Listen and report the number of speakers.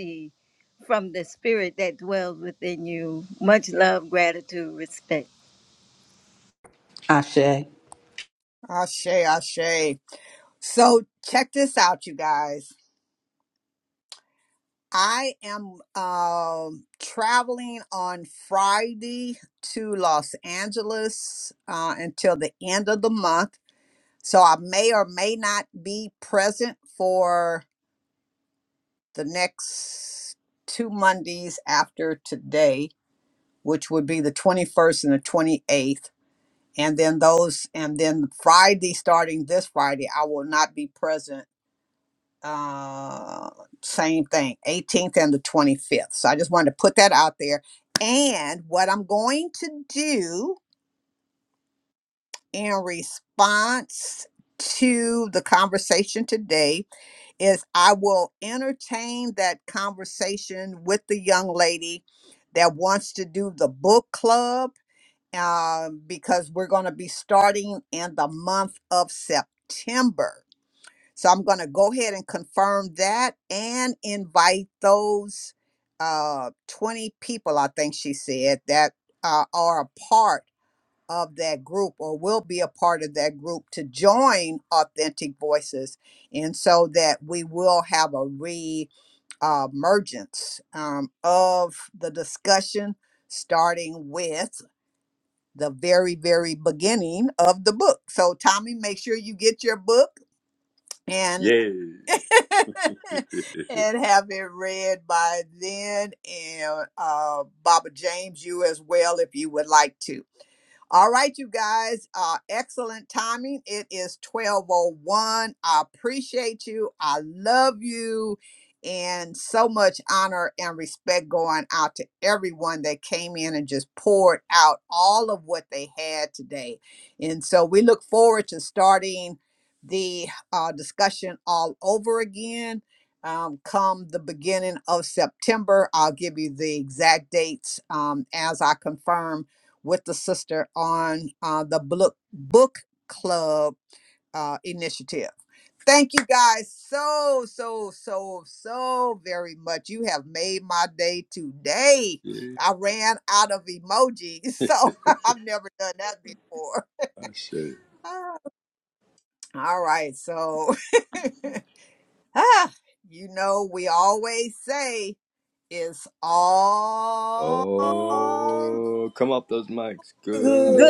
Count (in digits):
4